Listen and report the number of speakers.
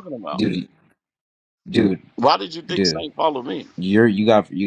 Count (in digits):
2